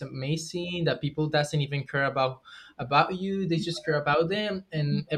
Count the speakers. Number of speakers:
1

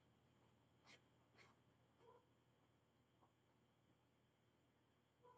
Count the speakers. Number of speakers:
0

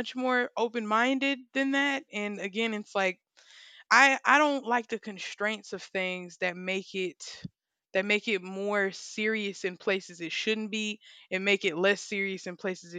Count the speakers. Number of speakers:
1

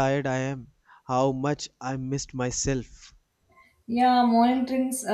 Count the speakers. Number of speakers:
2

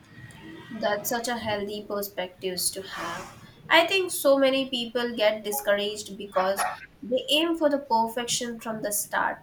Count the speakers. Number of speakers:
1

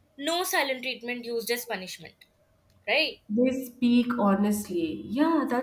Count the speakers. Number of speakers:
2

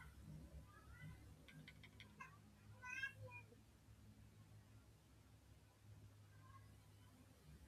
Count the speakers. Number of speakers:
0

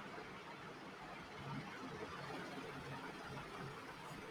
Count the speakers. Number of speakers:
0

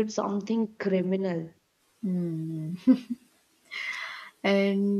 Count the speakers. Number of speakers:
2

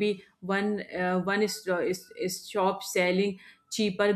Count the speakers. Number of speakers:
1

